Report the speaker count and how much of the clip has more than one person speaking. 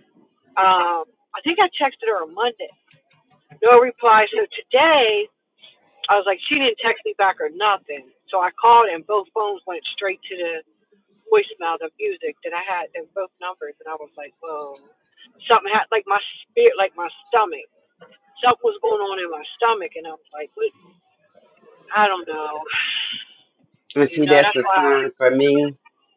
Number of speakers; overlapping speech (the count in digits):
2, about 3%